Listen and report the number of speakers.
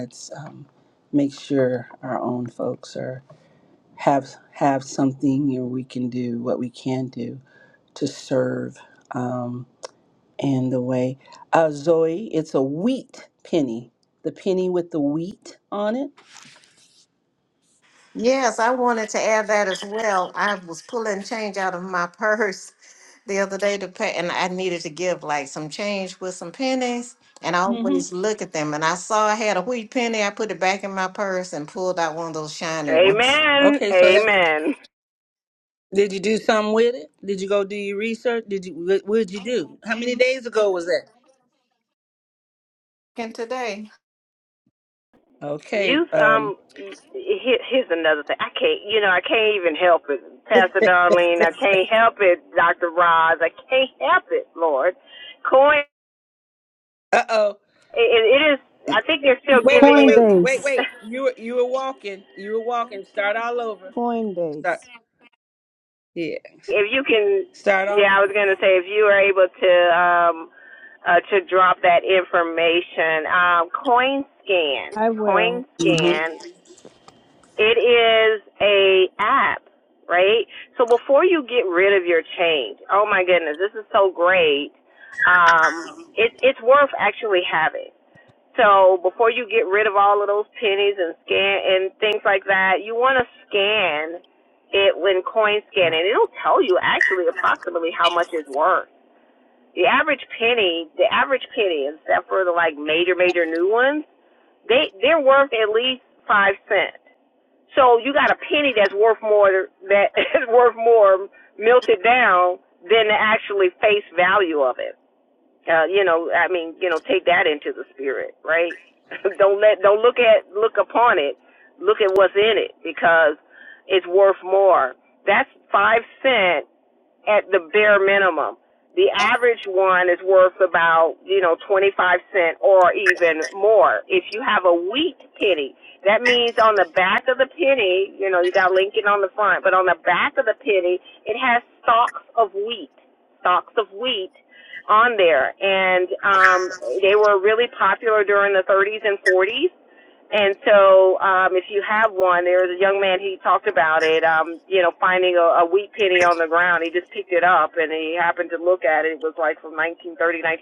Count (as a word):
four